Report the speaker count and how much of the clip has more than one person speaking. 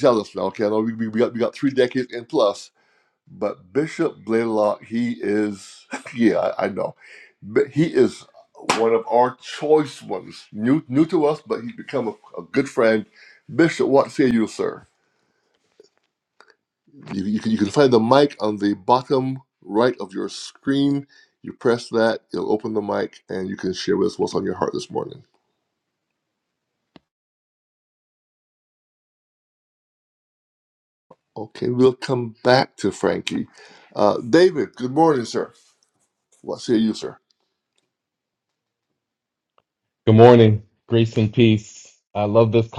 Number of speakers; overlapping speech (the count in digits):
2, no overlap